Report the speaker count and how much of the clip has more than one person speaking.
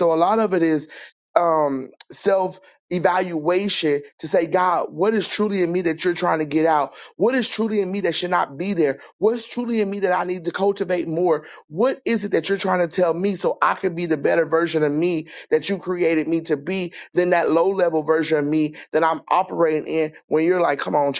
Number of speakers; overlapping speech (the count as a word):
one, no overlap